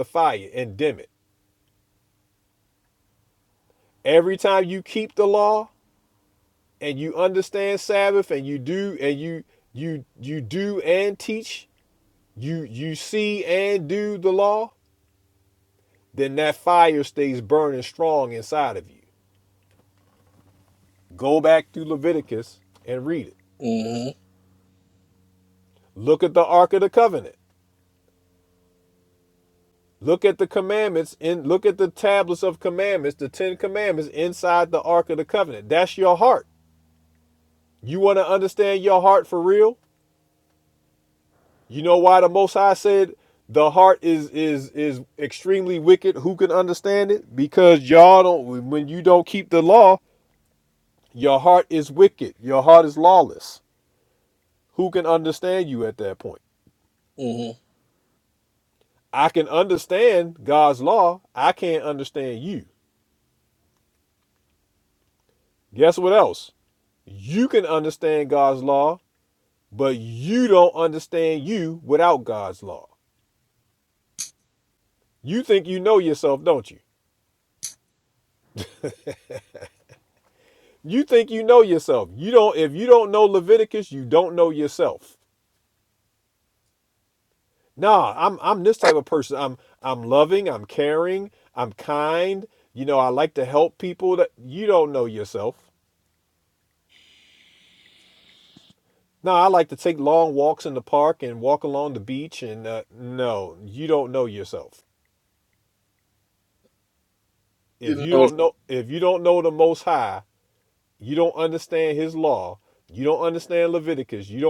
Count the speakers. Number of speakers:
2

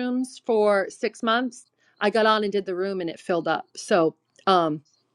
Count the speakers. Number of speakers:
1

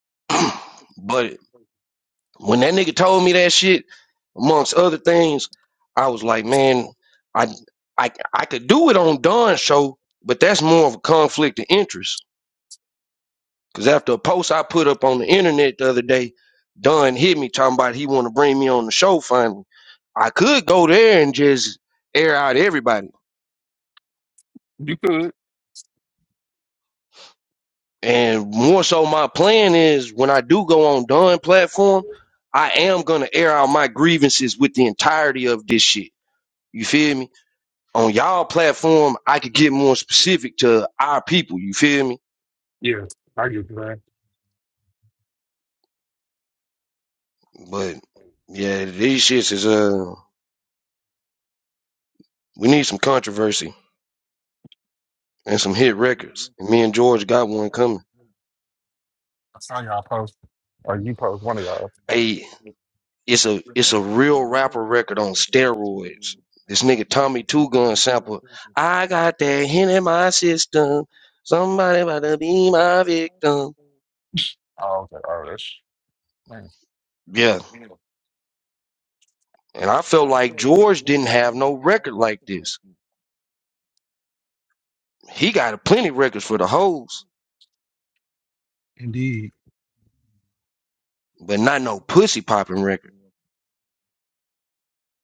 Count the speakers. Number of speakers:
2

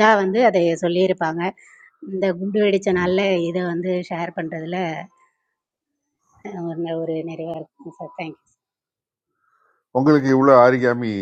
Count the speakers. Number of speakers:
2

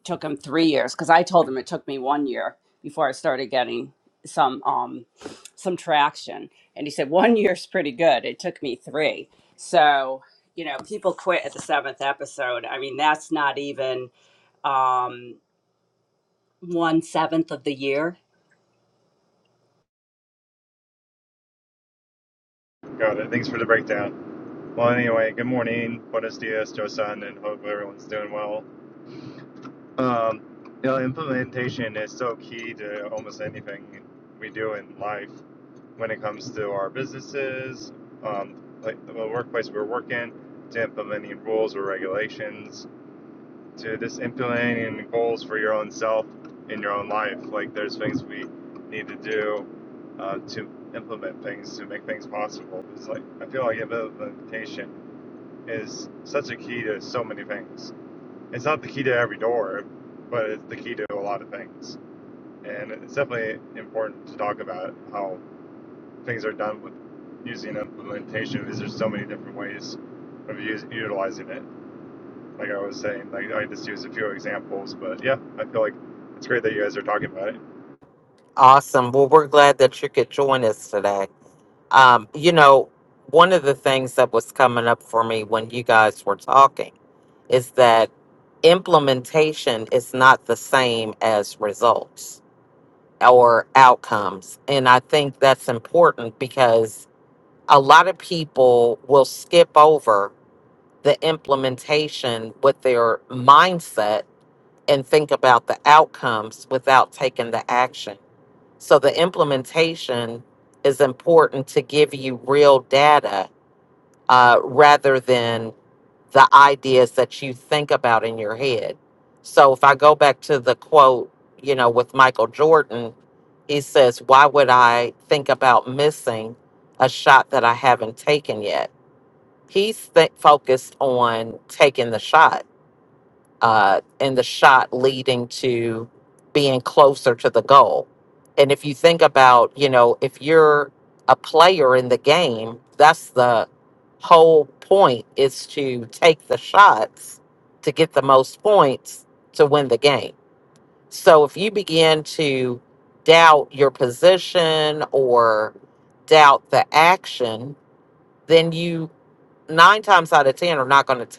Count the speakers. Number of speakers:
3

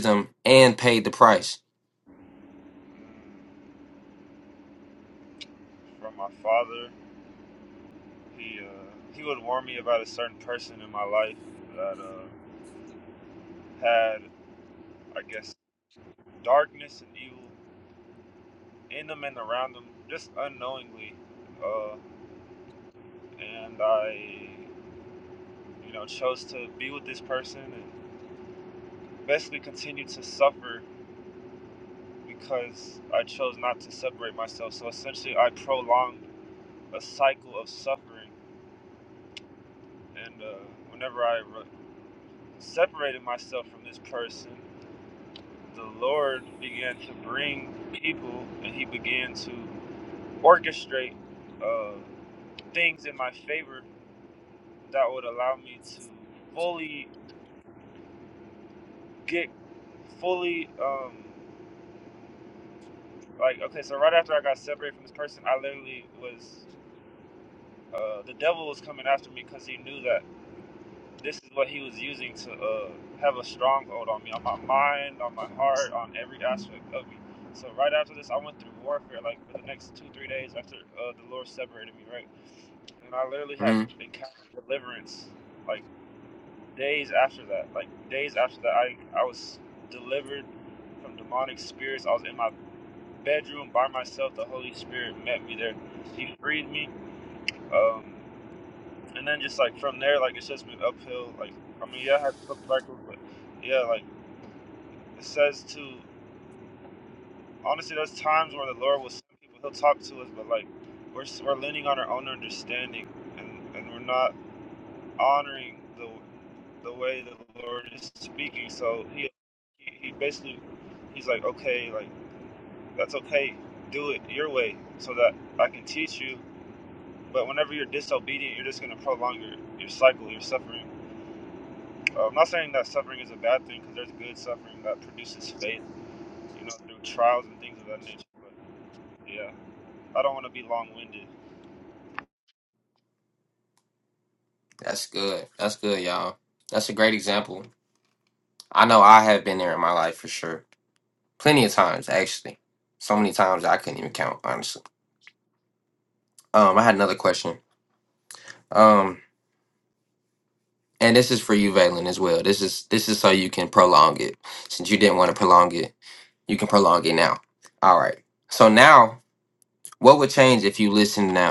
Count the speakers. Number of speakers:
2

